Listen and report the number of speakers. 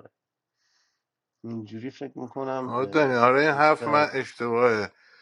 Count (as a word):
two